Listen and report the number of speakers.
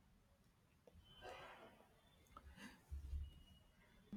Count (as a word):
zero